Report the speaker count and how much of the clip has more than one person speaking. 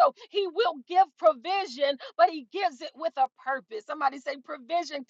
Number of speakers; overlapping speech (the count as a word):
one, no overlap